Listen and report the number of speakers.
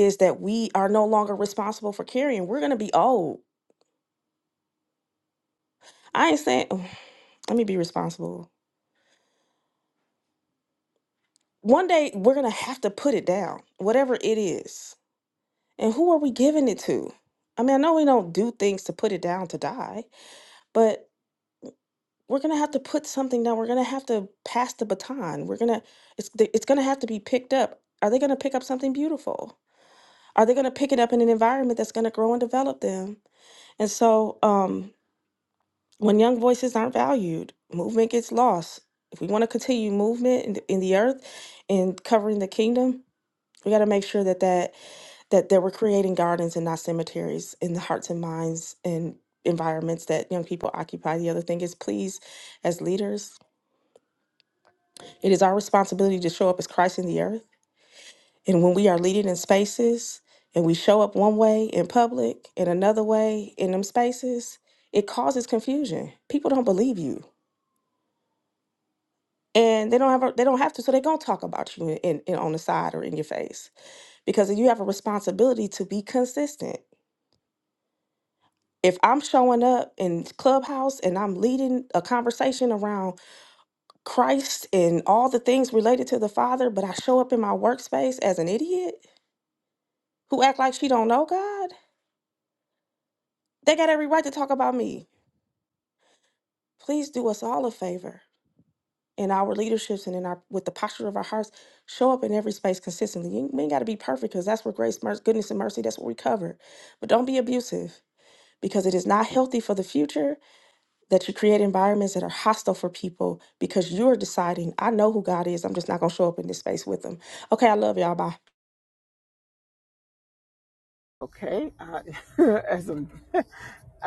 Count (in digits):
2